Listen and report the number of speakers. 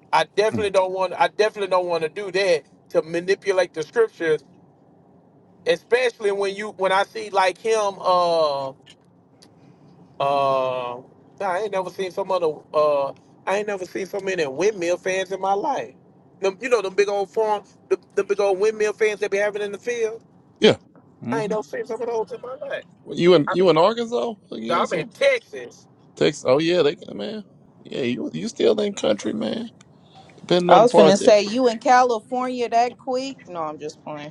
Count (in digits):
3